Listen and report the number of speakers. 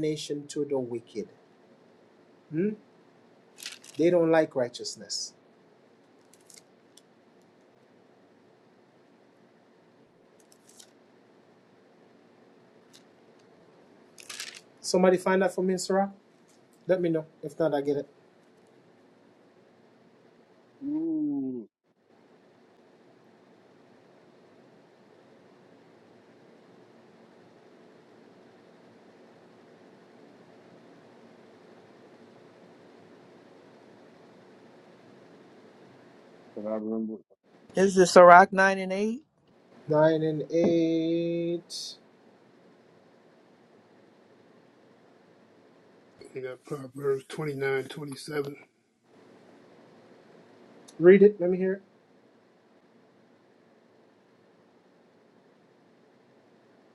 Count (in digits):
4